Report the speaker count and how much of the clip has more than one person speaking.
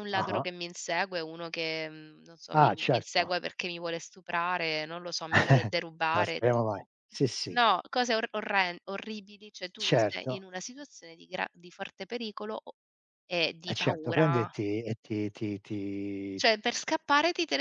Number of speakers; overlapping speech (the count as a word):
two, about 17%